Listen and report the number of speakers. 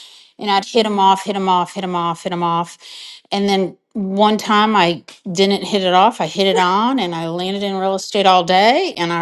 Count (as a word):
one